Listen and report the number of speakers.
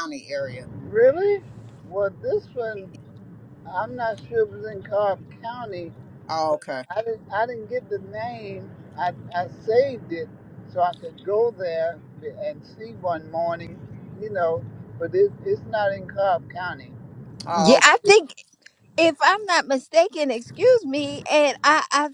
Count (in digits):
3